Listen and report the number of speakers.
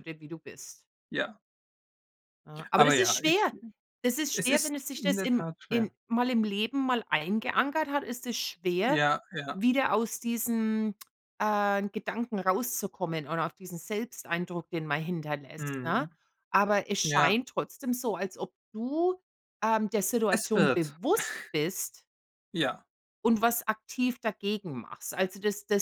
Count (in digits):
2